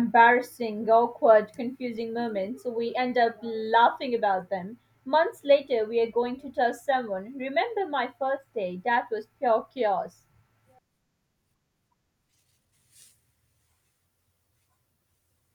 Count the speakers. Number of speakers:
one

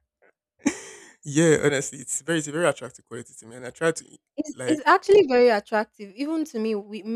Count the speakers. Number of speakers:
two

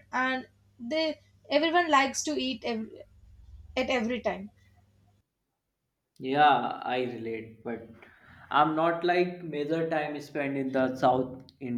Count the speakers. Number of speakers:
two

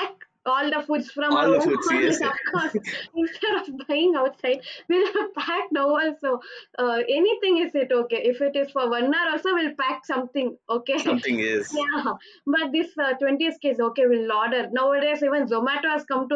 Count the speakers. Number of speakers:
two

